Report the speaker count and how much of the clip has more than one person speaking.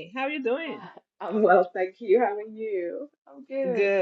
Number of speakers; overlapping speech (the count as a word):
two, about 12%